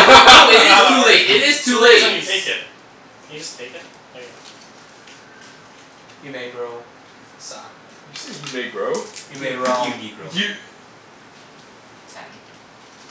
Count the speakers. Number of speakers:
4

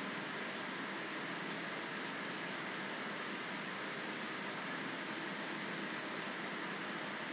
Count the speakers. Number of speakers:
0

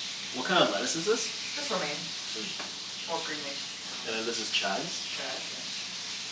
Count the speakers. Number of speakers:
2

